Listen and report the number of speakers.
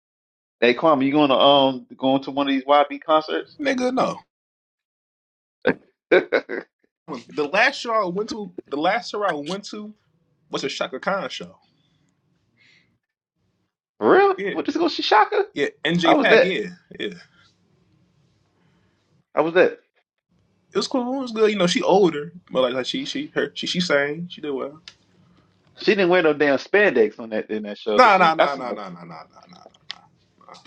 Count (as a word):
two